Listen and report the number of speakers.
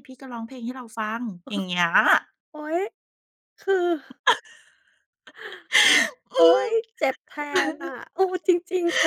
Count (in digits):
2